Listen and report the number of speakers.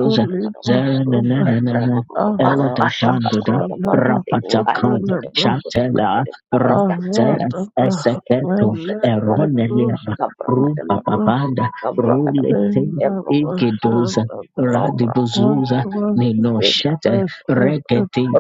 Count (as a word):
three